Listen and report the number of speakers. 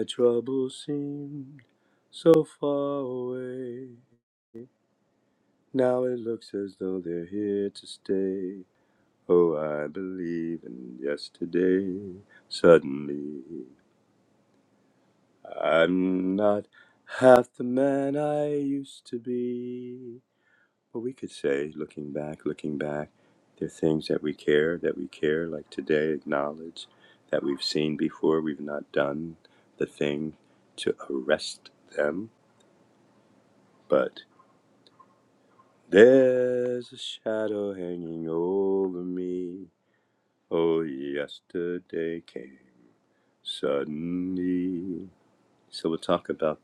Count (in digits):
1